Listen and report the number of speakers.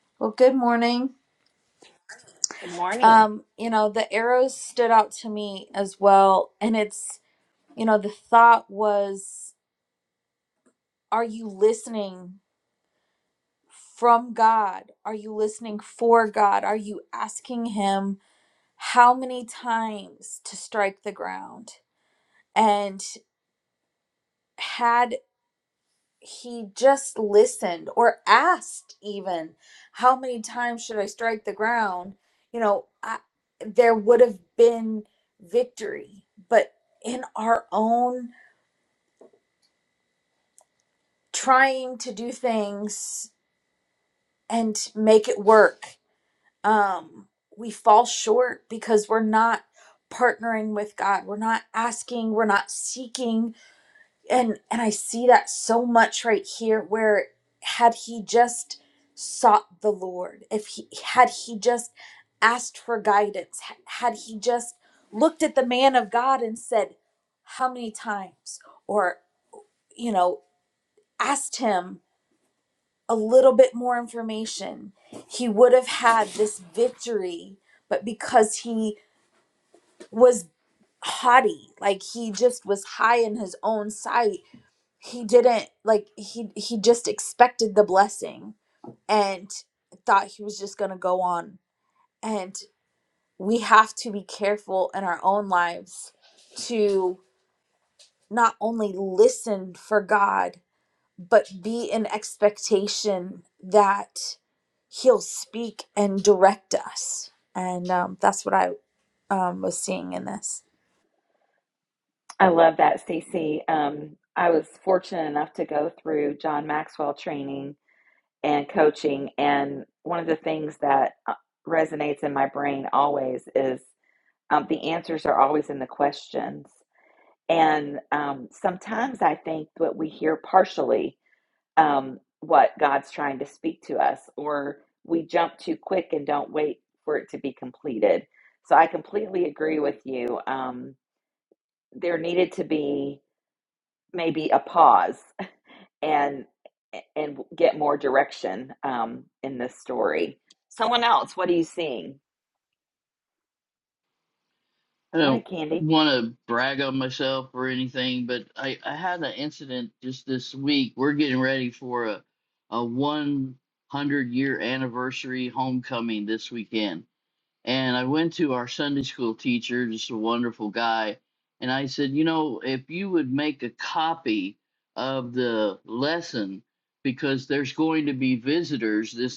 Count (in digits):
3